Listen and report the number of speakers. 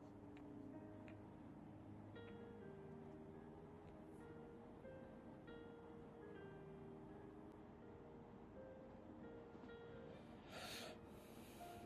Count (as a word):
zero